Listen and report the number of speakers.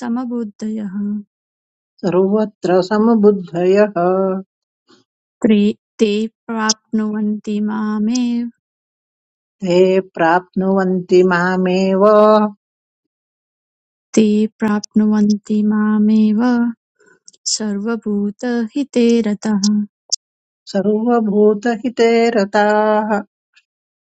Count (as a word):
two